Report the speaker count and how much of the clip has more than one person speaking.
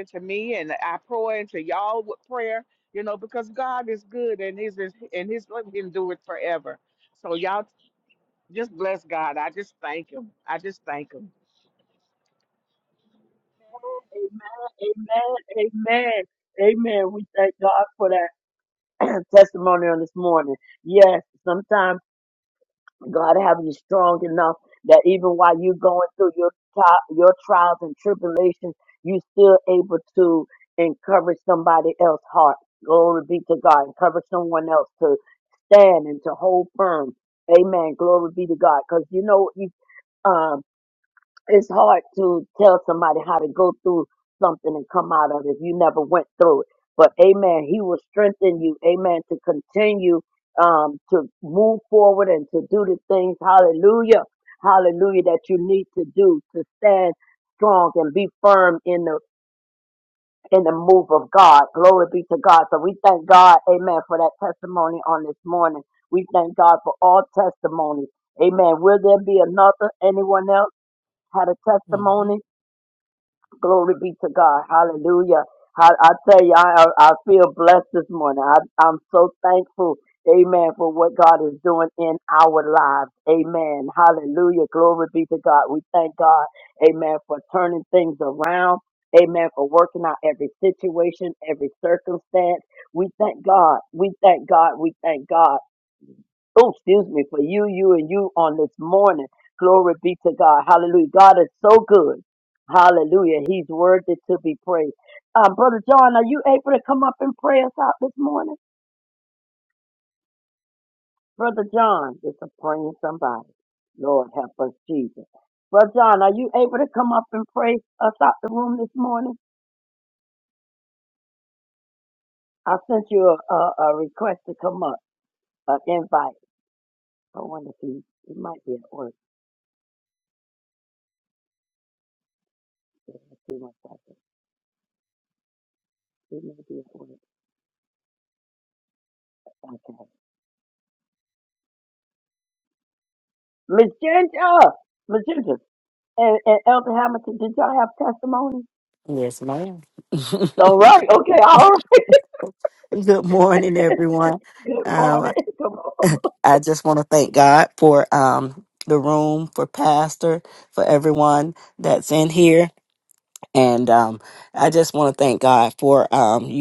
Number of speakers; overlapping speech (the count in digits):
3, about 1%